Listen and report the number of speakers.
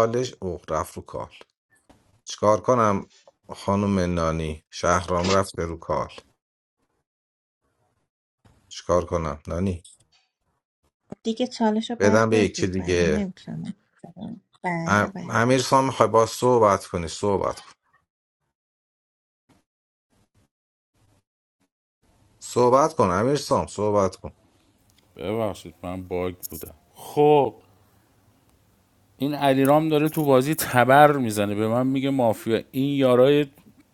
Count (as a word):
three